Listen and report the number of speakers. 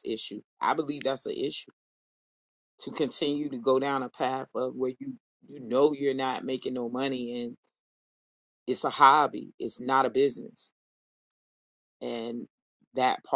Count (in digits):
1